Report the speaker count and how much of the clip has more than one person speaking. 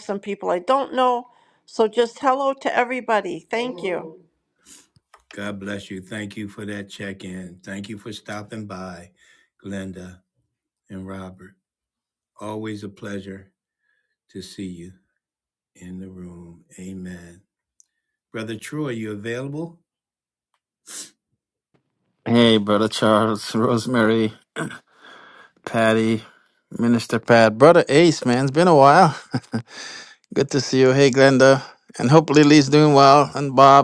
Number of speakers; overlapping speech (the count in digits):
3, no overlap